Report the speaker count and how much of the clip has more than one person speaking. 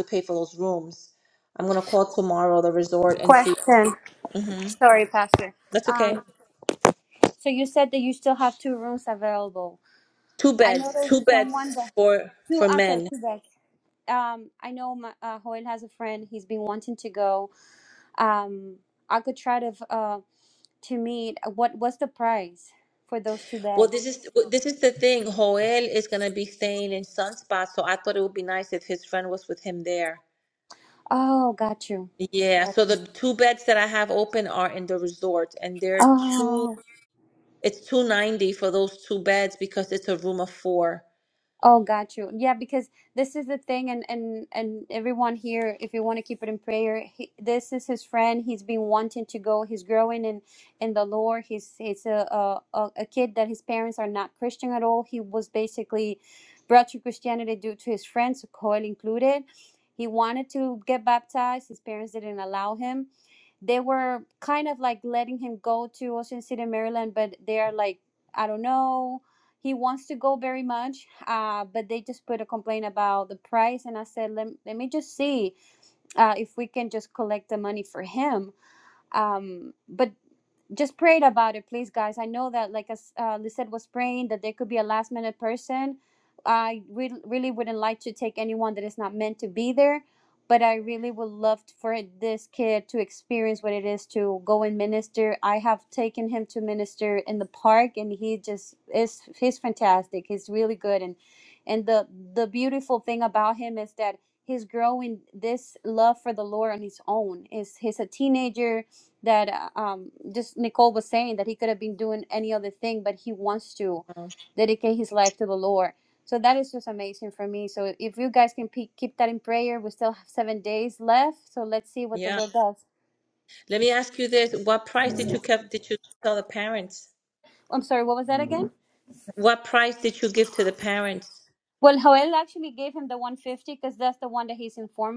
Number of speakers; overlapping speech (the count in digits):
2, about 3%